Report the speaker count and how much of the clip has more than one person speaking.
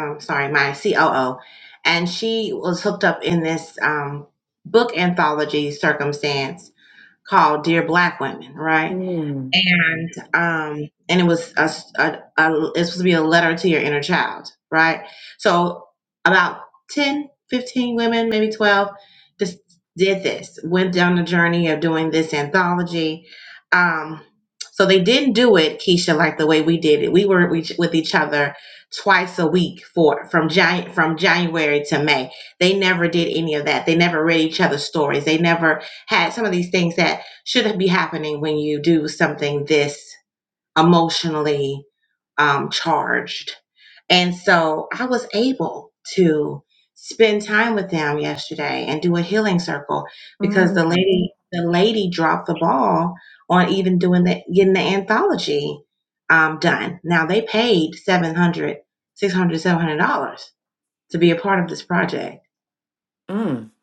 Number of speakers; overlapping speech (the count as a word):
two, about 1%